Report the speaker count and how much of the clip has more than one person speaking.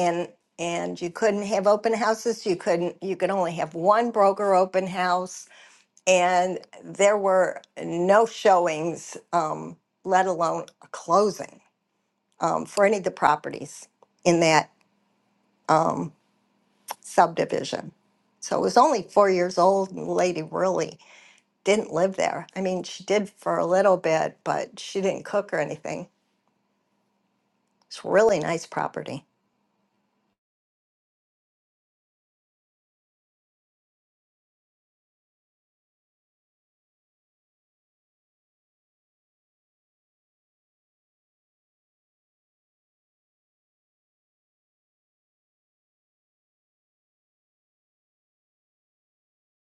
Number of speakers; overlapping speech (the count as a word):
one, no overlap